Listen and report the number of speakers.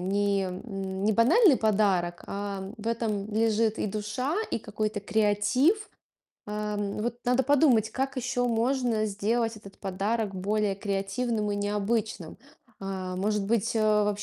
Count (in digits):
1